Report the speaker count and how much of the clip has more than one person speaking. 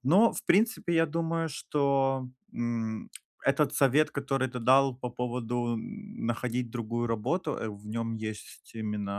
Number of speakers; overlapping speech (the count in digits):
1, no overlap